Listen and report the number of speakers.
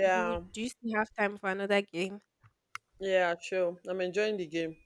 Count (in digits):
2